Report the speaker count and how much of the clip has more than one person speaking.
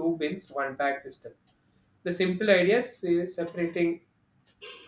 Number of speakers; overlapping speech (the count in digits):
1, no overlap